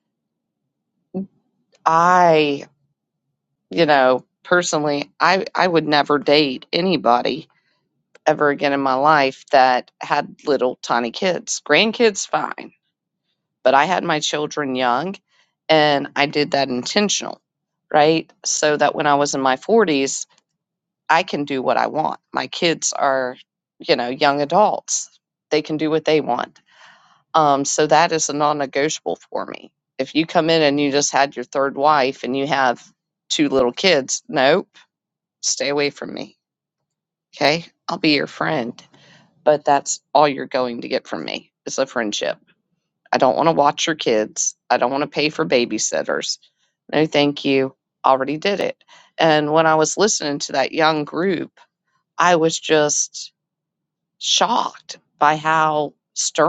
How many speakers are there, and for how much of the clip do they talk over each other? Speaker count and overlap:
one, no overlap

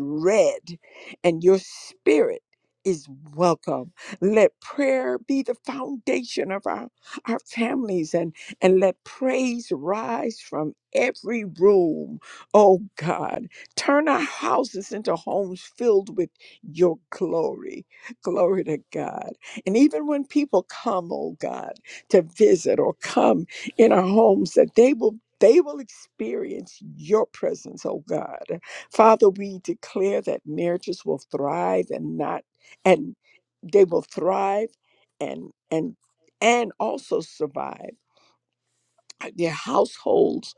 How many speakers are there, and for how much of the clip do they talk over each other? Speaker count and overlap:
one, no overlap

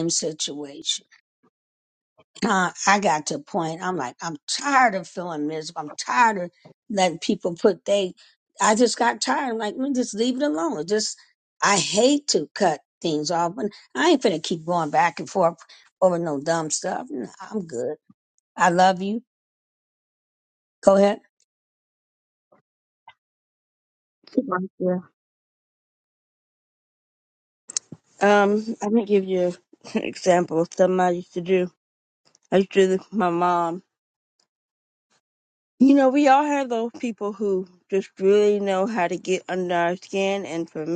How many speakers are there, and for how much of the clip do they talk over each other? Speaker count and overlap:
two, no overlap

